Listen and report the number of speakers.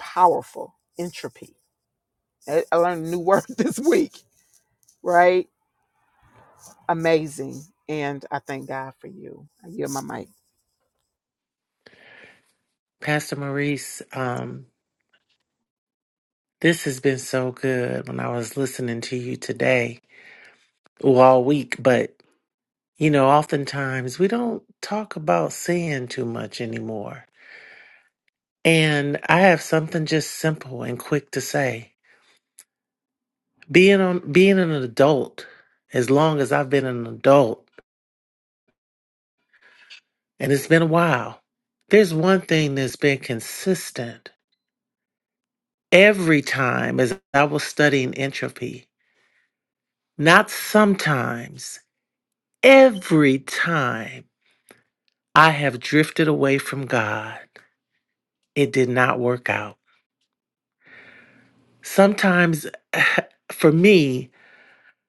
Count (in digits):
2